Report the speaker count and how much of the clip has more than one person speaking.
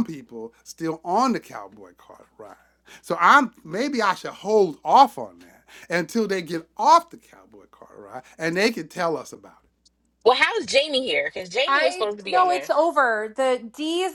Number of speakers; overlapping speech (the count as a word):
three, about 7%